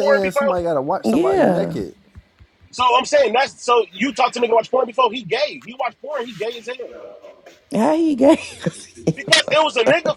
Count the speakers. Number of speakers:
three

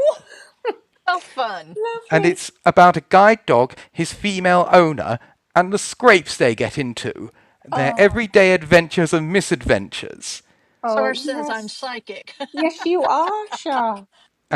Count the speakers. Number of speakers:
three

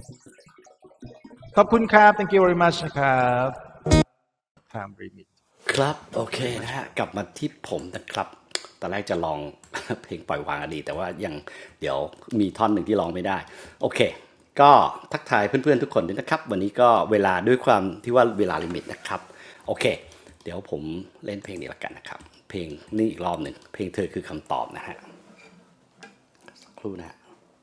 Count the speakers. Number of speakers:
two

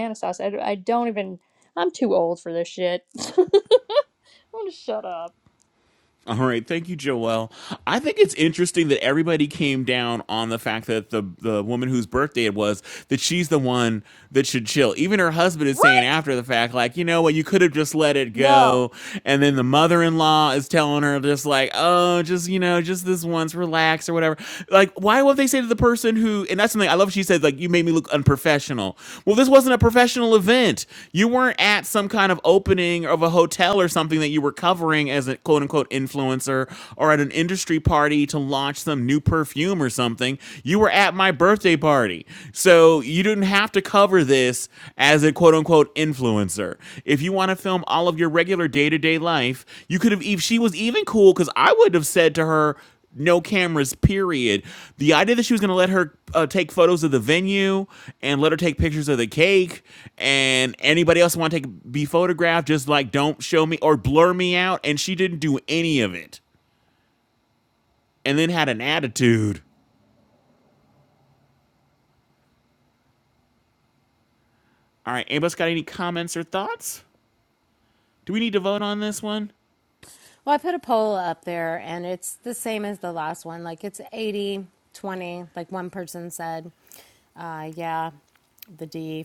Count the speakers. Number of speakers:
three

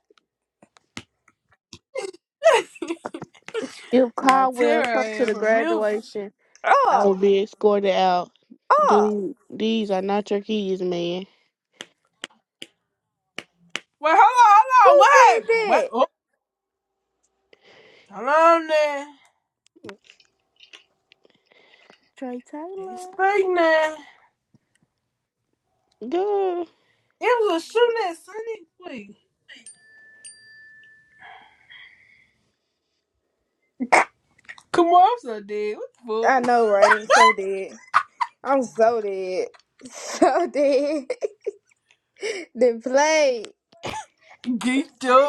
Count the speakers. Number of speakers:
three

